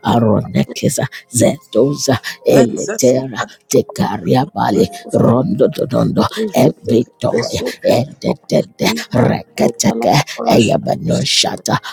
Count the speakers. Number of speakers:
2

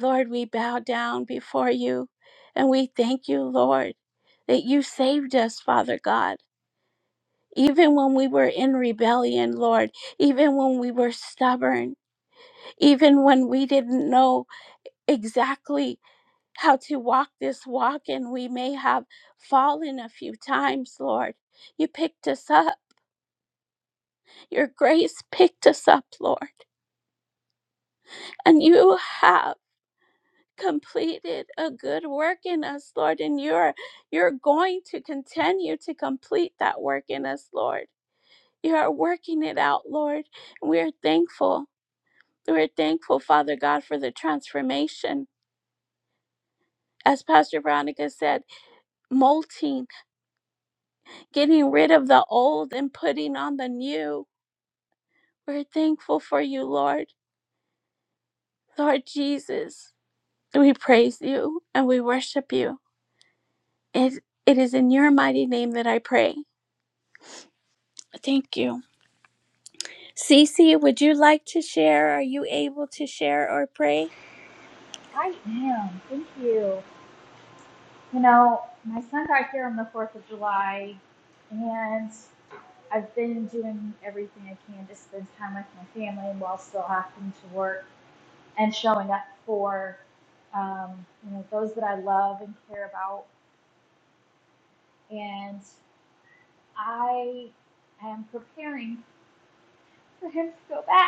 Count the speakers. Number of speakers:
2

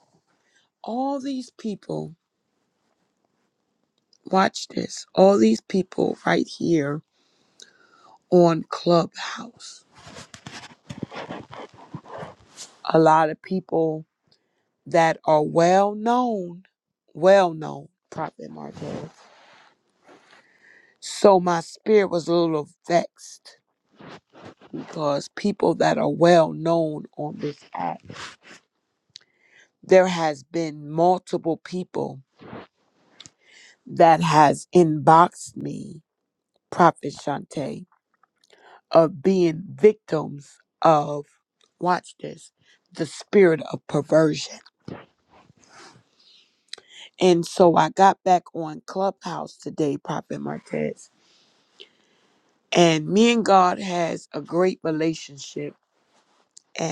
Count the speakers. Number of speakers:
1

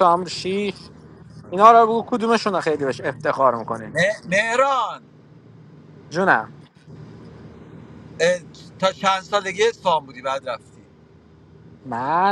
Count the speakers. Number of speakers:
2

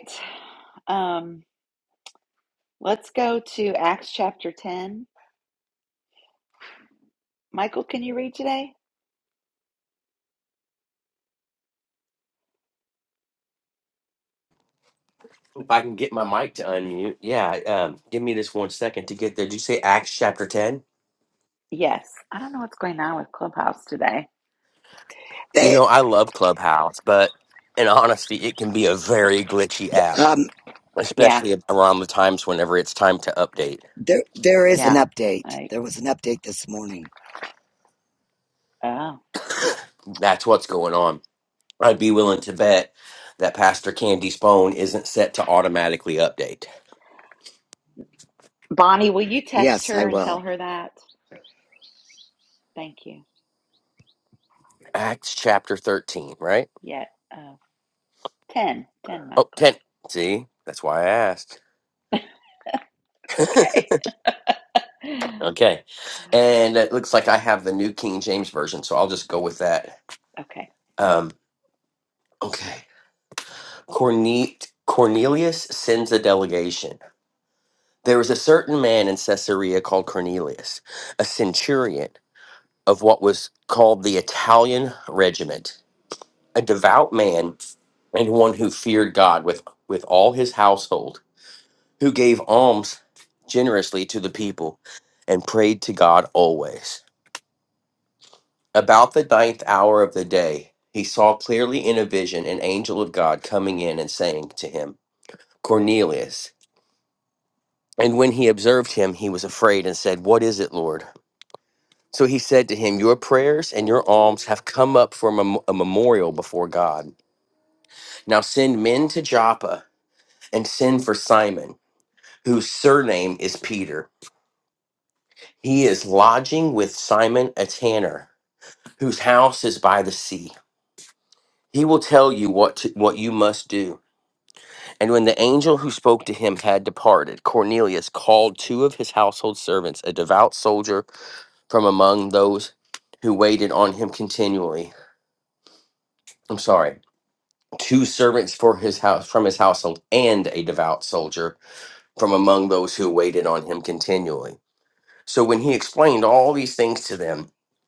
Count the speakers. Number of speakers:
3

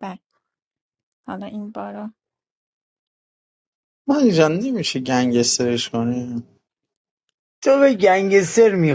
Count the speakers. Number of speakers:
3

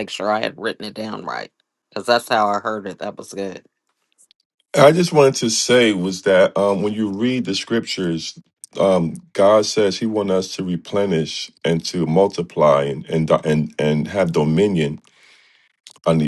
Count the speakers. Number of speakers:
2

